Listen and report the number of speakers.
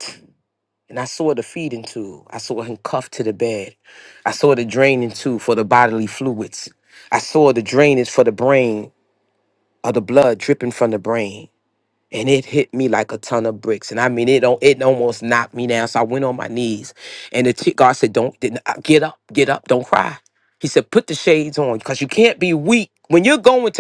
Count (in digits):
1